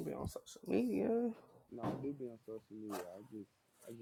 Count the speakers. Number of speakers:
2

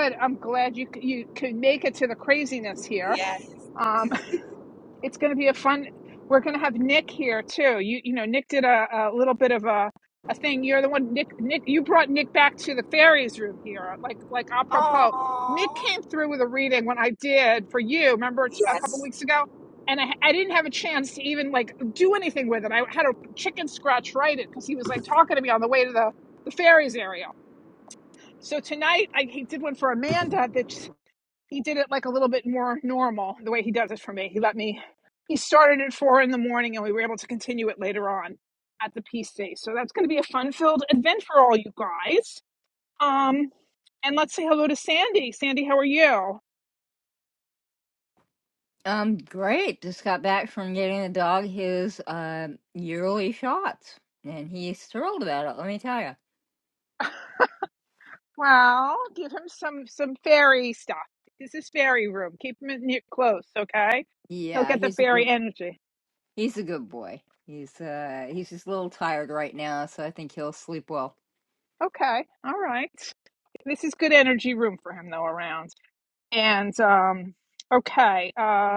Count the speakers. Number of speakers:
3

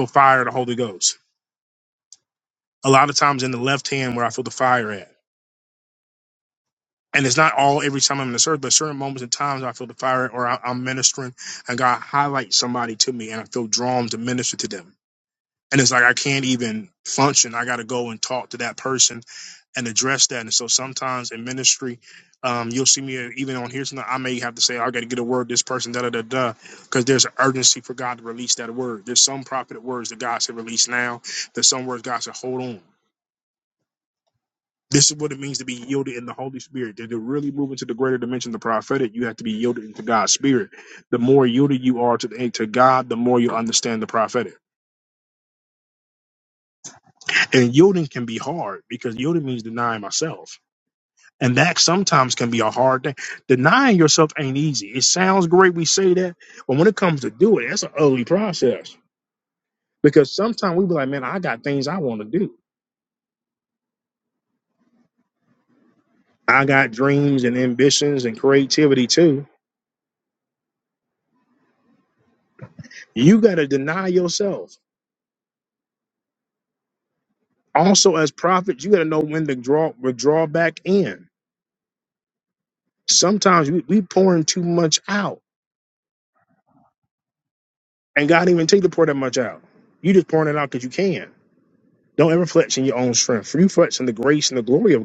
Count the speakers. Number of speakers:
1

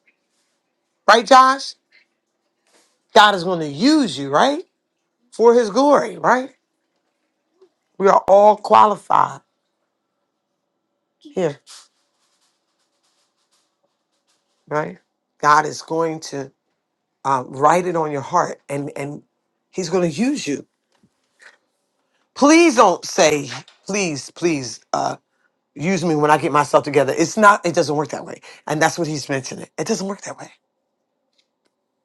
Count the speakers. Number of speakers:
1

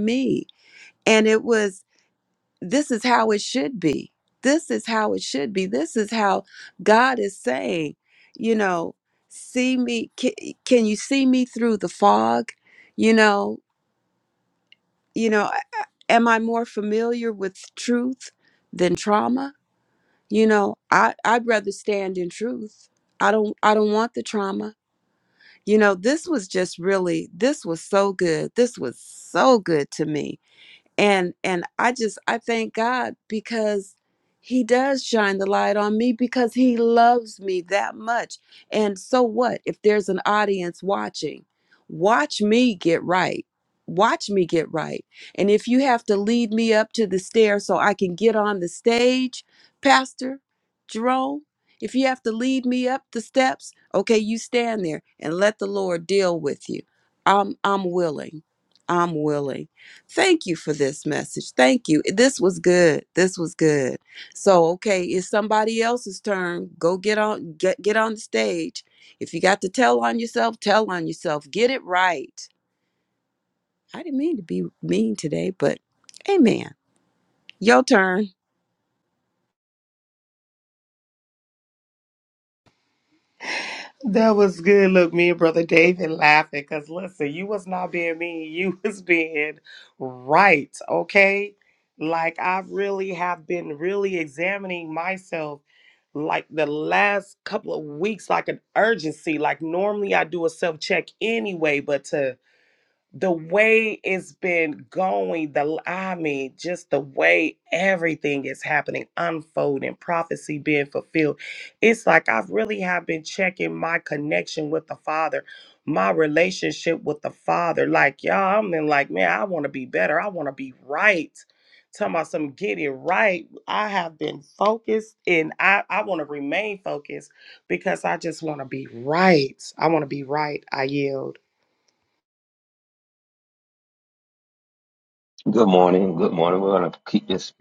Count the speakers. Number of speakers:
3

